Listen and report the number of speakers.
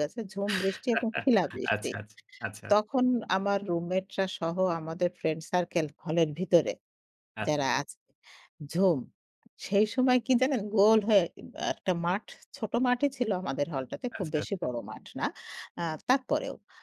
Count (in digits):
2